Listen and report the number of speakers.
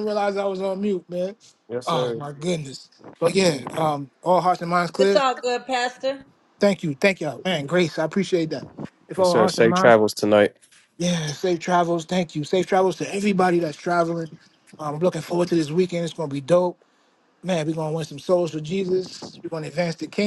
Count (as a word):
three